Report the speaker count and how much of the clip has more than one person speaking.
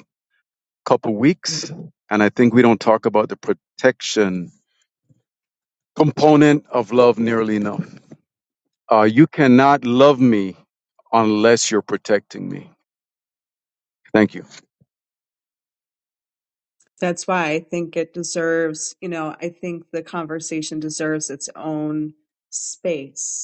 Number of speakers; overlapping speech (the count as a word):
two, no overlap